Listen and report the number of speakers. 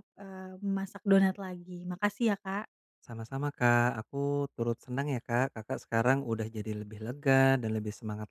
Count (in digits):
2